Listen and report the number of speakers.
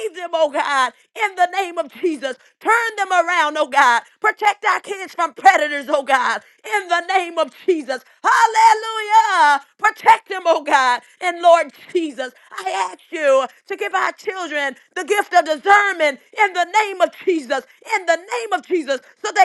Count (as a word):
one